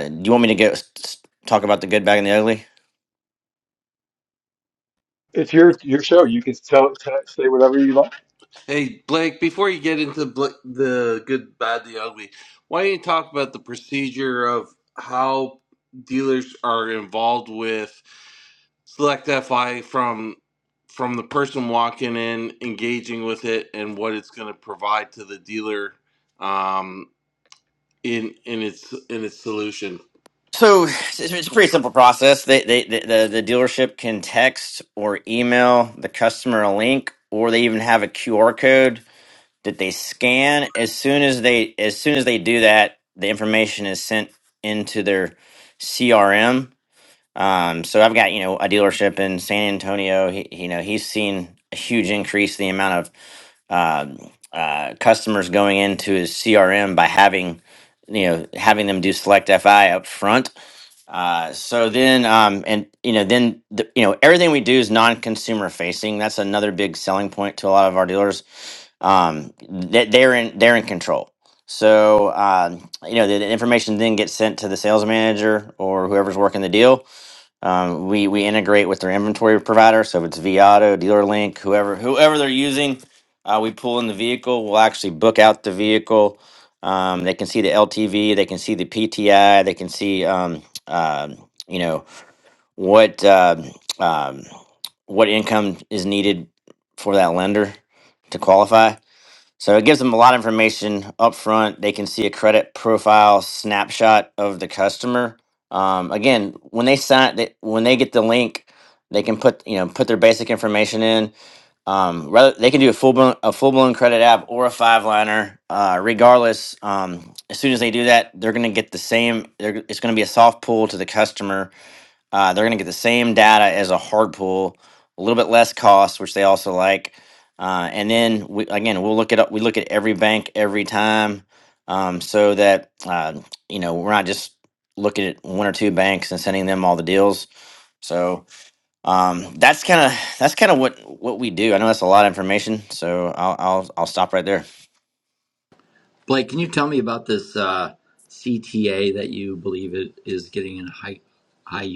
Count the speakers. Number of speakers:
4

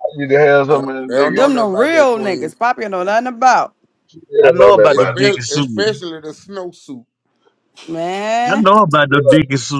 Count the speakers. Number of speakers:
4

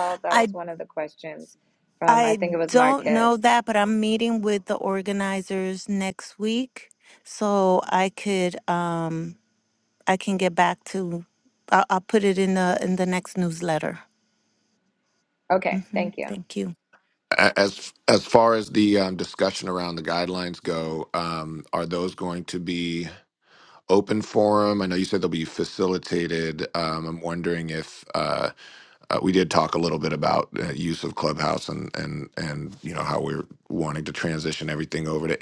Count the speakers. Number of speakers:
3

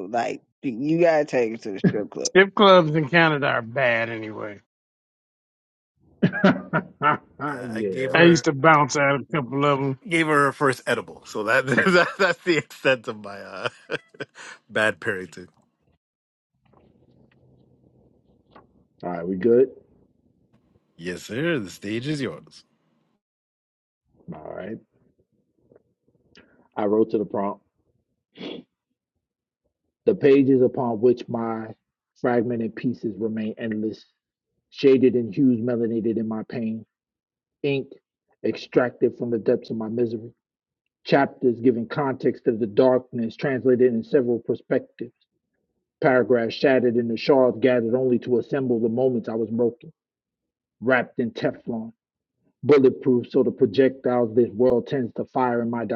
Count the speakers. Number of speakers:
4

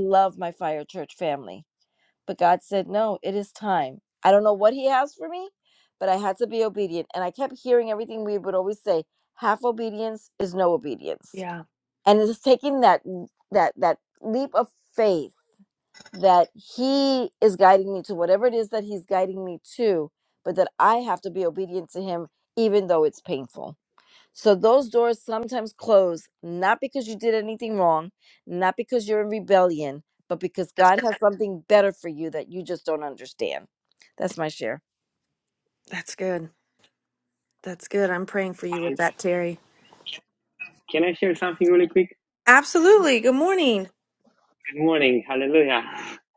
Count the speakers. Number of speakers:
3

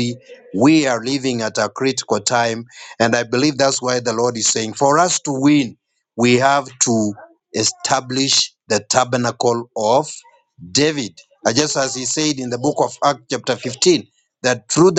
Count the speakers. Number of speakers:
1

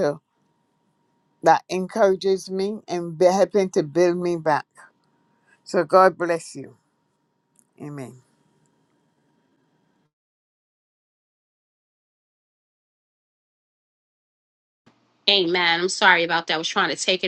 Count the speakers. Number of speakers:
2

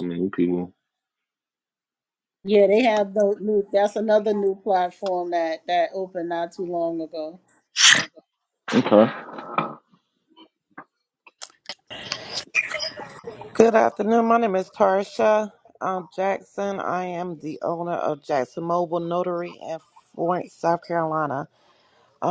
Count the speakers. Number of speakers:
3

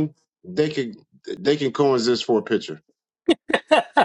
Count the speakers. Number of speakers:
1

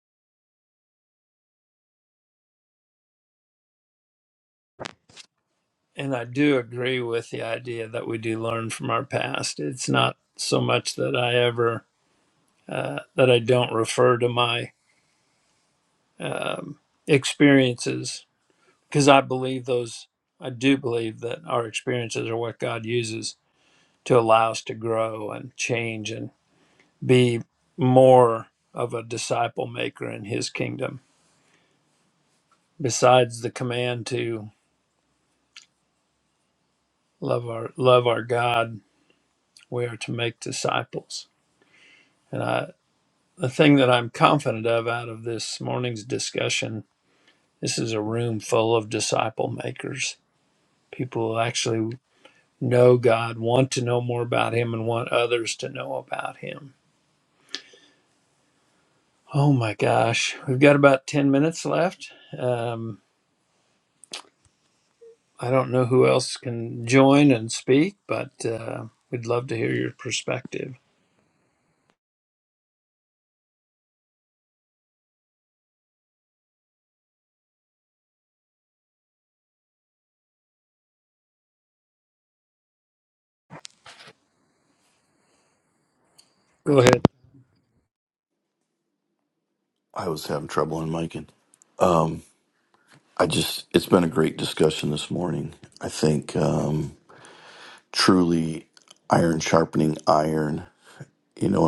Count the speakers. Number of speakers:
2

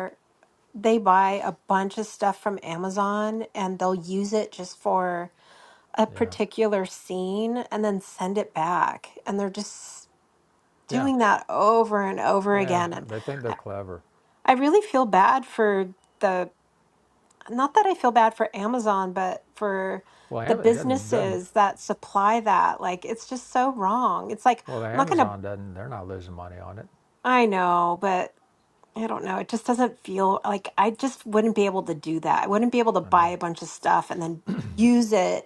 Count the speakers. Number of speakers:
2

